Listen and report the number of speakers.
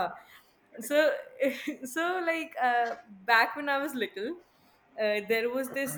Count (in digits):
1